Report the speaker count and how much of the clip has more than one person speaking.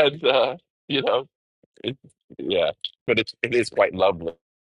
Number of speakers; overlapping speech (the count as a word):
one, no overlap